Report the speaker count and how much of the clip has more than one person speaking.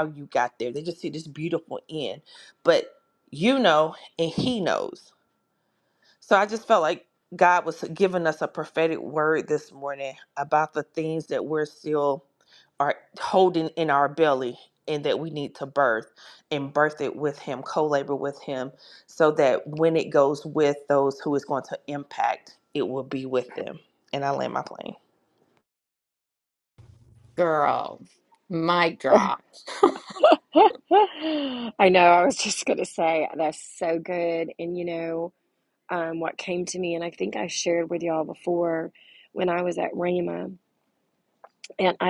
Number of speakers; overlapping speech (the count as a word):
three, no overlap